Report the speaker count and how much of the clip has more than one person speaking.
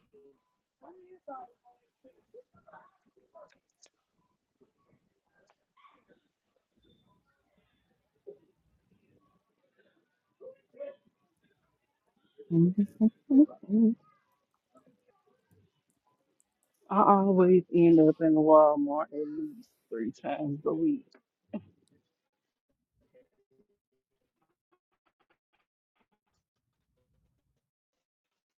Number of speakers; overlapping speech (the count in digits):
1, no overlap